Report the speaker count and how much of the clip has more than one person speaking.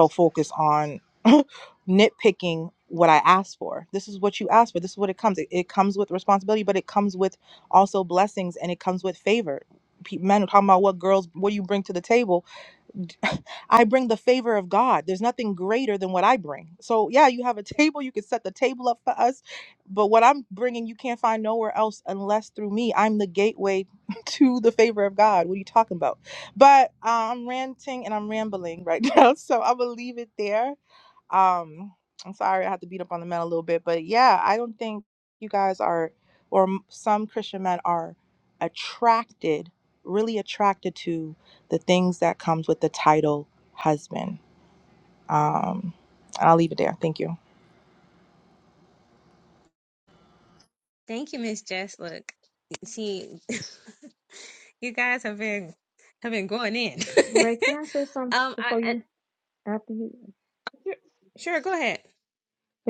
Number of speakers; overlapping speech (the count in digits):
3, about 1%